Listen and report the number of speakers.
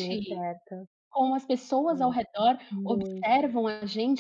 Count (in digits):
2